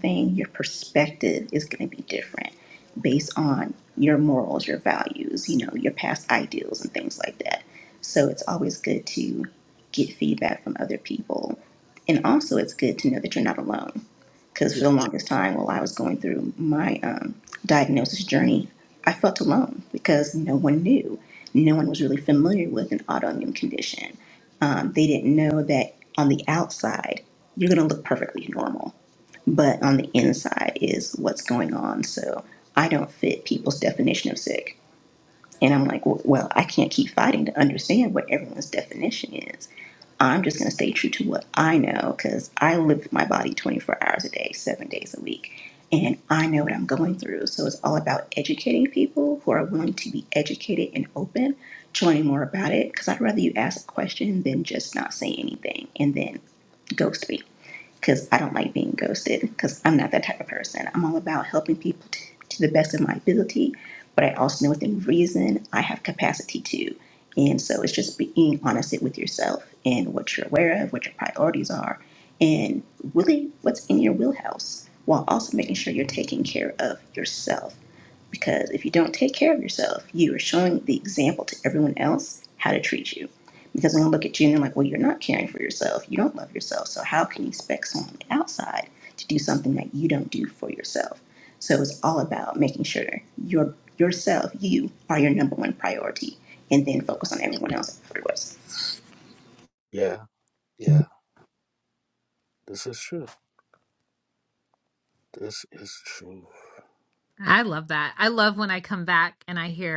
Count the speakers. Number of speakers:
three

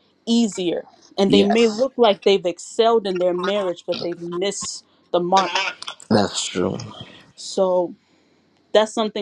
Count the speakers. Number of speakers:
two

